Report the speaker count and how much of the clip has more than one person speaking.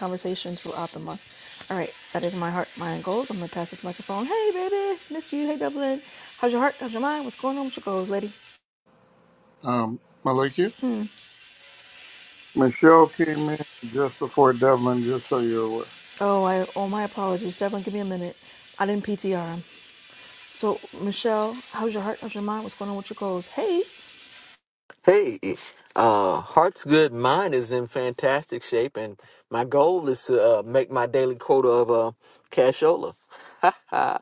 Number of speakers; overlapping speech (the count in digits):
3, no overlap